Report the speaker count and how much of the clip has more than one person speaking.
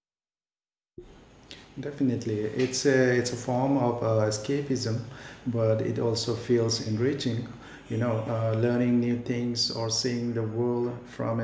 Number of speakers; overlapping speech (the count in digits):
1, no overlap